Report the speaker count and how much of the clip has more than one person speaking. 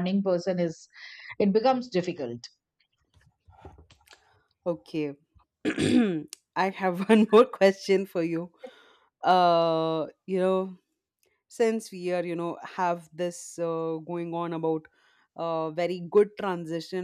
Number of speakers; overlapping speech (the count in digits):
2, no overlap